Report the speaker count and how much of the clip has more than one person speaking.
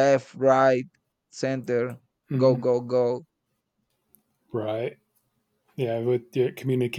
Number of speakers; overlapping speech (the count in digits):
2, about 4%